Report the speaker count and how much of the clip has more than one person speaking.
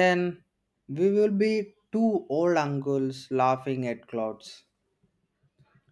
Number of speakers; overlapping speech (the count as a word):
one, no overlap